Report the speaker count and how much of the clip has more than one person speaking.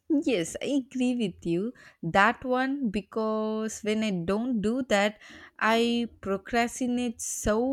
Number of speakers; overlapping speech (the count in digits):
1, no overlap